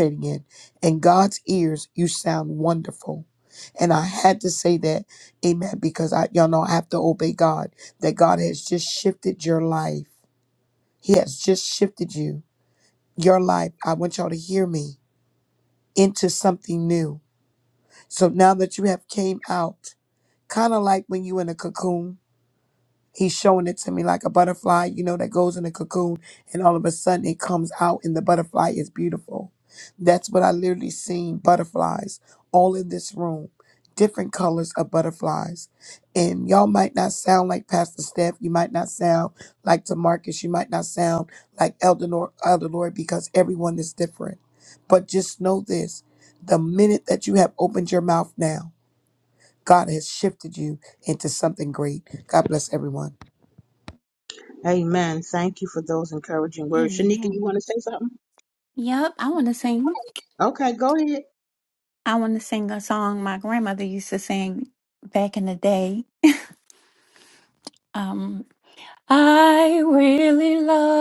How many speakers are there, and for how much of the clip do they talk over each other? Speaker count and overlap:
3, about 1%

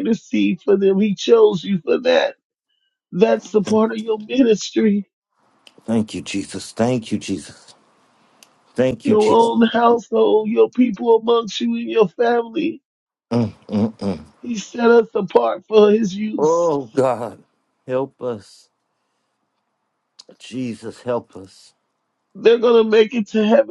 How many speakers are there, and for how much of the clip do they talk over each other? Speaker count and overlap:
2, about 2%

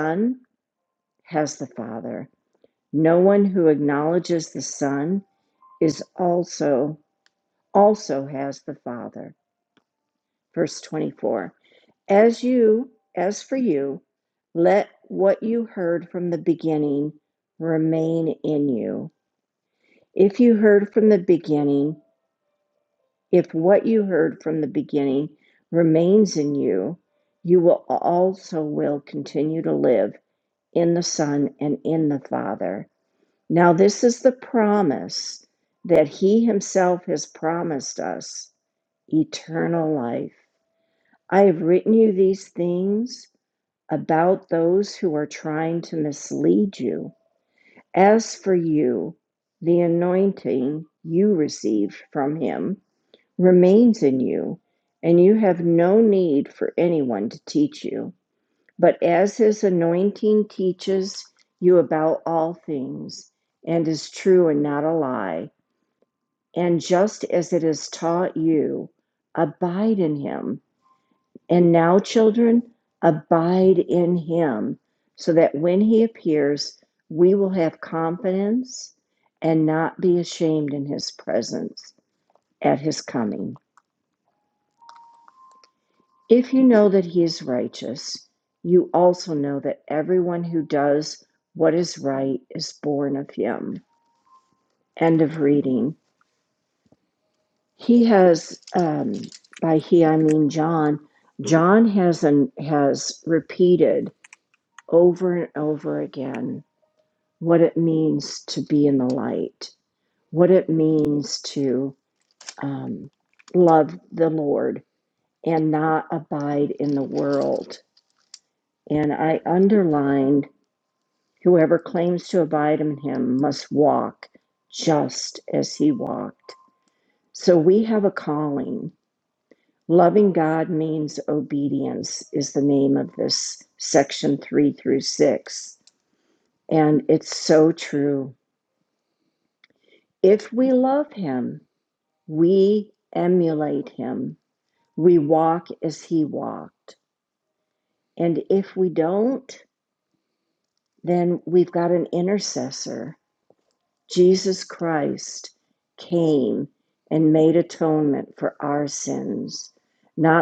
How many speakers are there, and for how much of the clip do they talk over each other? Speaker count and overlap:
1, no overlap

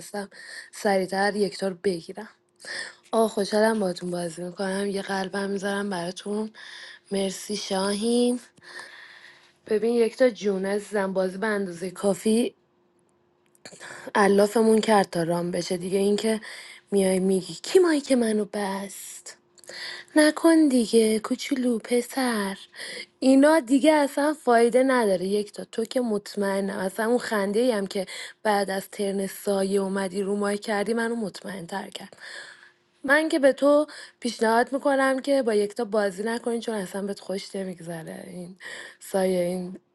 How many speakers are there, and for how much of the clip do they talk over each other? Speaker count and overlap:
1, no overlap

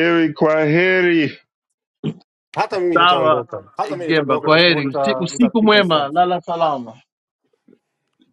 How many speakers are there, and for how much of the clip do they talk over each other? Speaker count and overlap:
3, about 32%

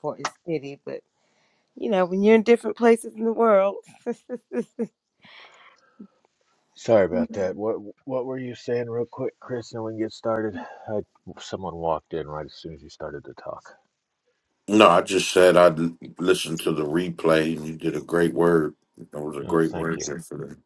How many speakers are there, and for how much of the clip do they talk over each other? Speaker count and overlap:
3, about 4%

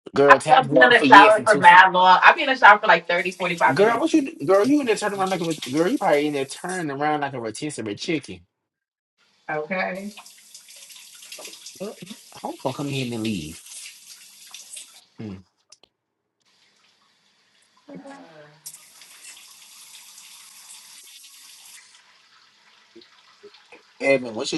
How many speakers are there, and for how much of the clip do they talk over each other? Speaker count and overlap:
2, about 7%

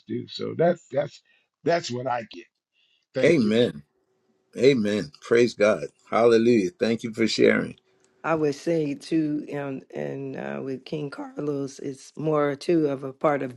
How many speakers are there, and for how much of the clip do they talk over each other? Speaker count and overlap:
3, about 2%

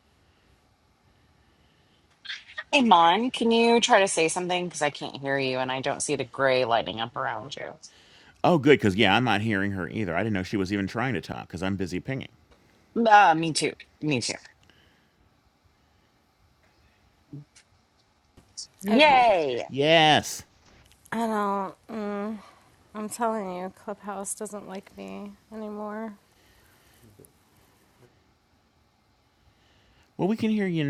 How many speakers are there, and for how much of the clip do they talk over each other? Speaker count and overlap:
3, about 1%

